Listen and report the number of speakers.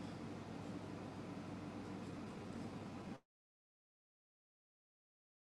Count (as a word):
zero